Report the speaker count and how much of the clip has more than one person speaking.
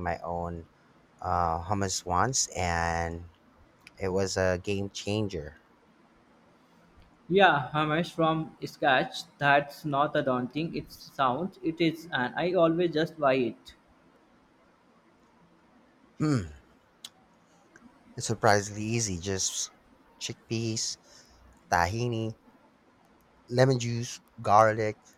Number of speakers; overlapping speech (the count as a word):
two, no overlap